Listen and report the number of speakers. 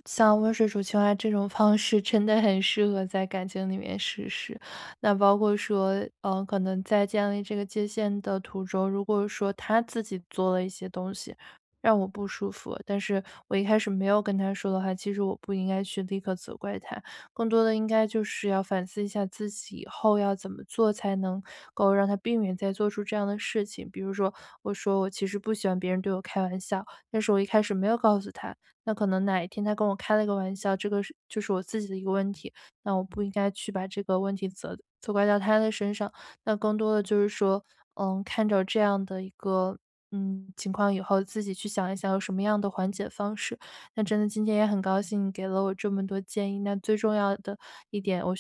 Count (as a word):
one